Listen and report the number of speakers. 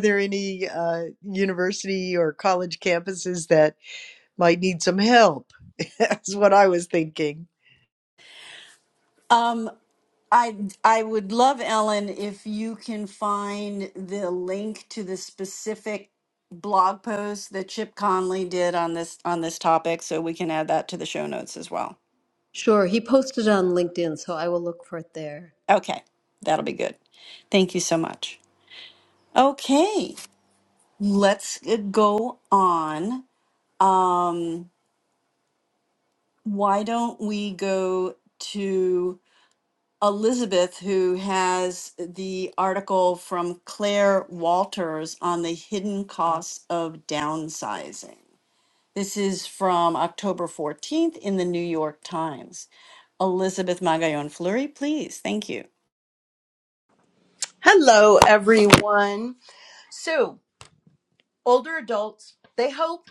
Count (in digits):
4